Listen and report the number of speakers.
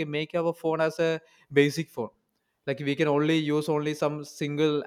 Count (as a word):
one